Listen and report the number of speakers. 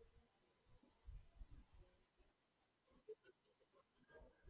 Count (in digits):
0